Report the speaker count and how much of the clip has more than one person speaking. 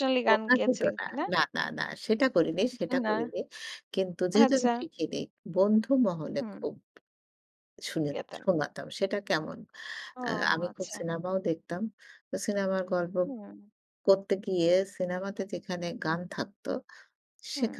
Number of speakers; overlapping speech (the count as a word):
two, about 17%